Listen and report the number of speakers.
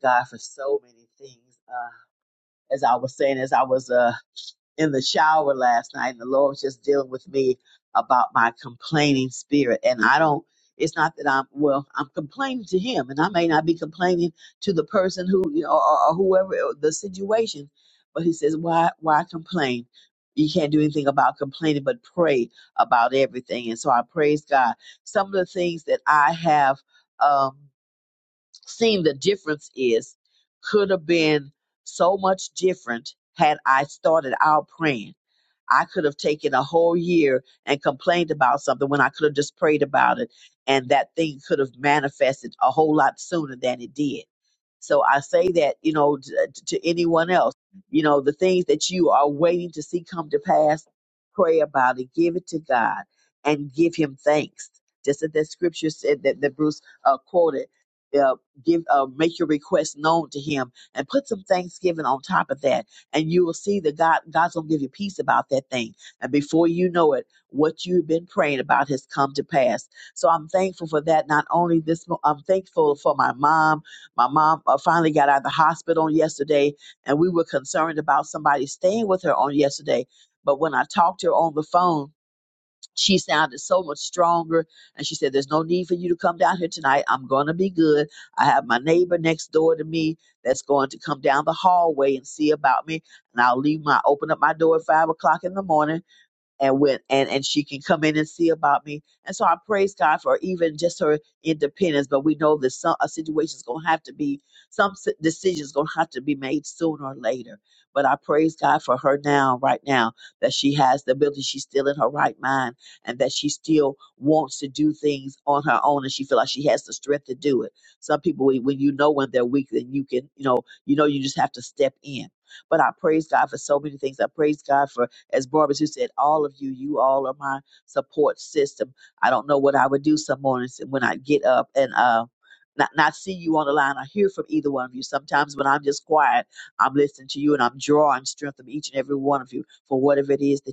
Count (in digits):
1